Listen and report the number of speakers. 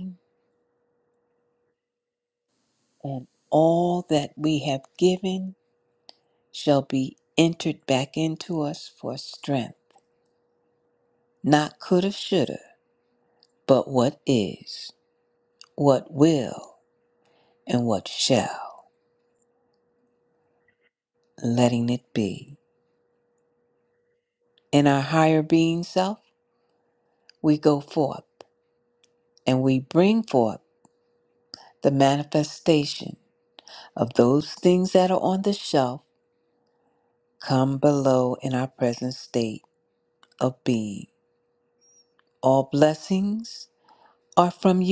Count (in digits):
1